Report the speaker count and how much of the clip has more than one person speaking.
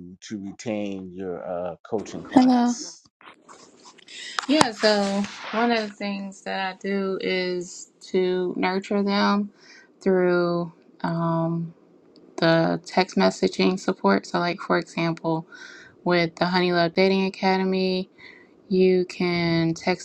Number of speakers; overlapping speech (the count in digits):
2, about 1%